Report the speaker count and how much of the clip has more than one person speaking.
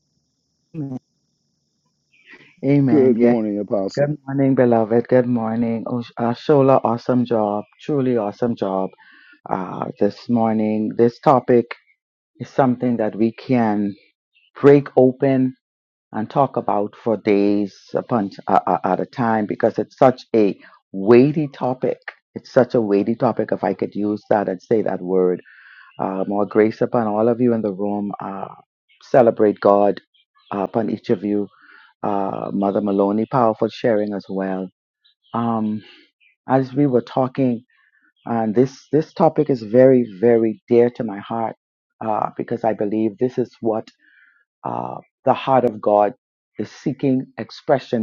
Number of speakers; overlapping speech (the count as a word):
two, about 1%